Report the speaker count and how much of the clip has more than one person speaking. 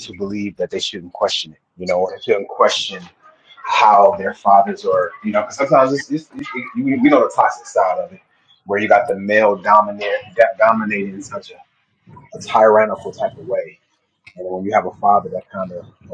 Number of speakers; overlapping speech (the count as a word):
one, no overlap